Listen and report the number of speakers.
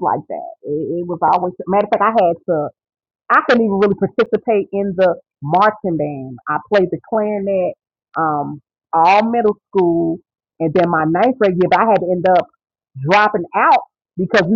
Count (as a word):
one